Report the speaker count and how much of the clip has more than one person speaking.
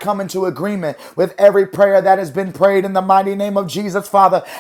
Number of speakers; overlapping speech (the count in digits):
1, no overlap